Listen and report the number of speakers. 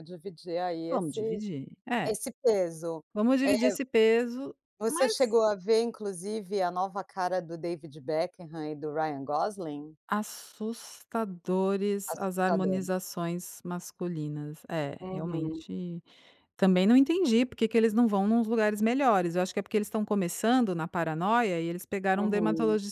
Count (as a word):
two